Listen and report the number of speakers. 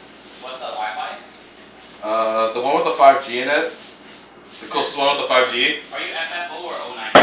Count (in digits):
2